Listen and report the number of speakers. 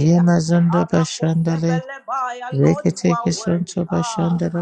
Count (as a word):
two